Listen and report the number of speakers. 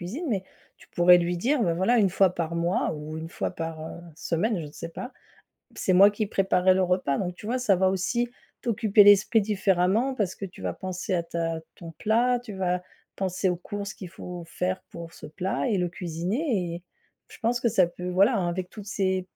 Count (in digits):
1